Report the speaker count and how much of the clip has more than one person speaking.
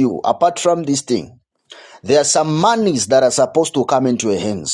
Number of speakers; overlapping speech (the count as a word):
one, no overlap